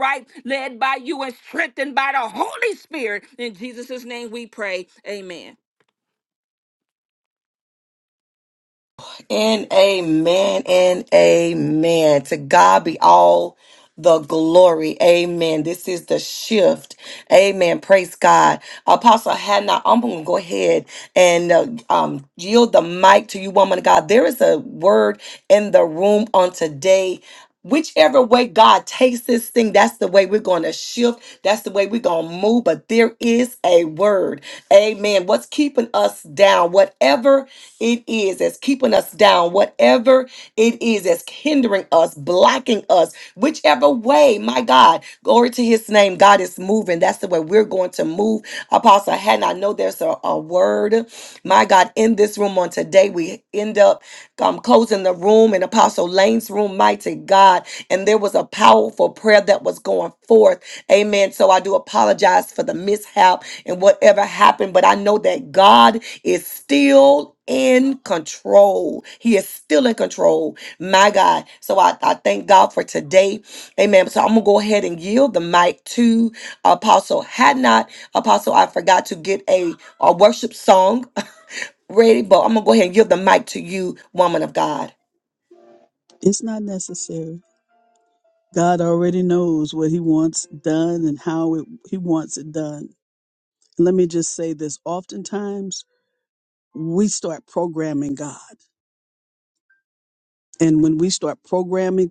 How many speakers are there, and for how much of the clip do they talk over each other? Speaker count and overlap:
three, no overlap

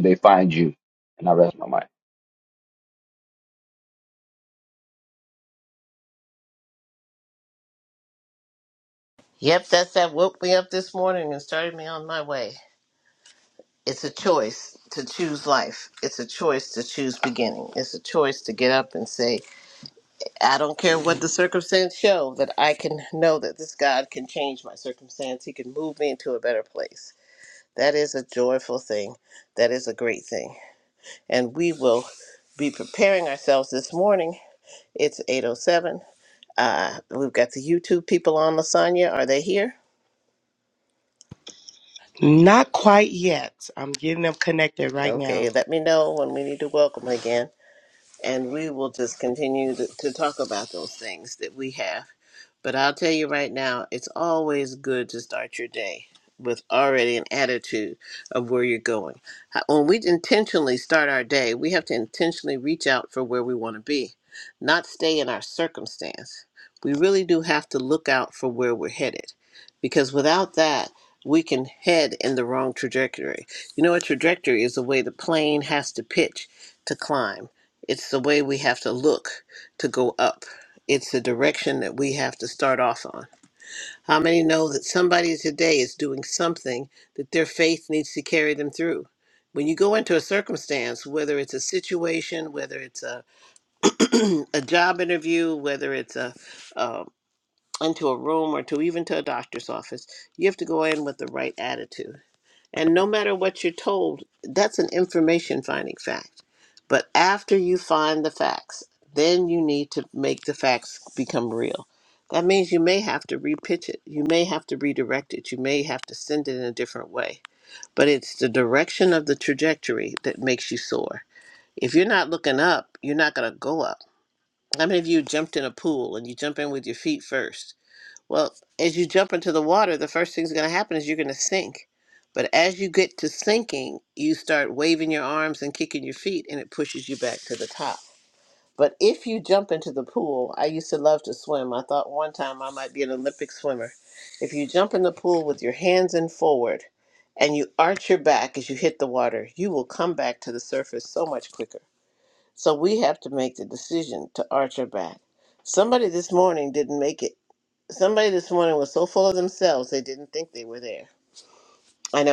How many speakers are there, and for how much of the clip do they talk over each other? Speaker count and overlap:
three, under 1%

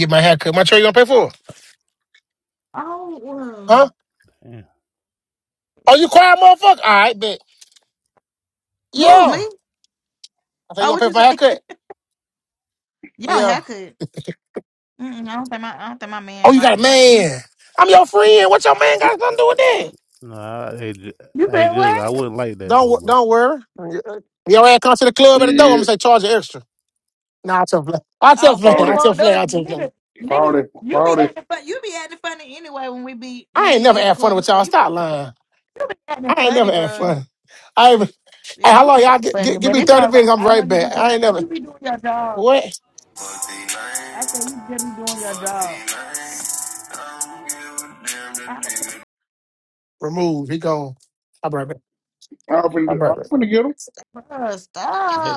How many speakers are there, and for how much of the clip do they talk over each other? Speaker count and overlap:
five, about 23%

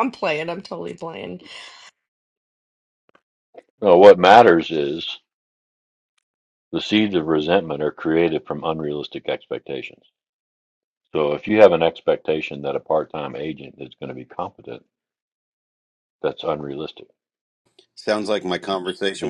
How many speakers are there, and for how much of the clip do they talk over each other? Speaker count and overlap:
three, about 1%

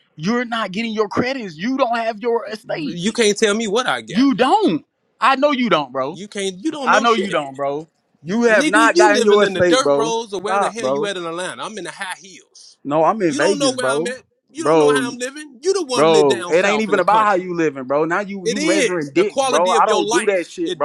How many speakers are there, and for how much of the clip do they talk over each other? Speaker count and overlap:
two, about 39%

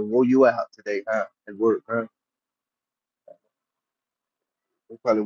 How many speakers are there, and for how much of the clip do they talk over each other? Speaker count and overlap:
one, no overlap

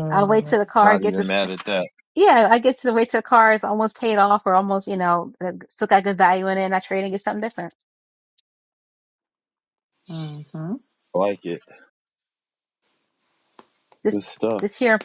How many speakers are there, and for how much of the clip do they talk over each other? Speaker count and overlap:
three, about 8%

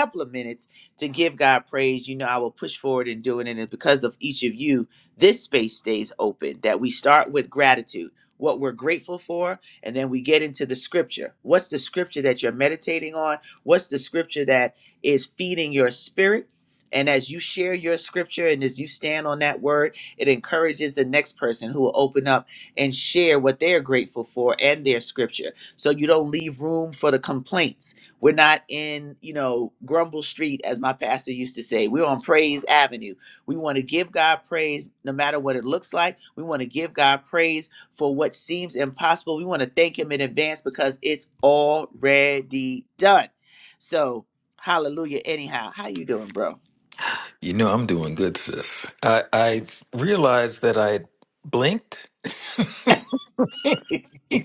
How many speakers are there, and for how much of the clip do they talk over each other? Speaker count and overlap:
two, no overlap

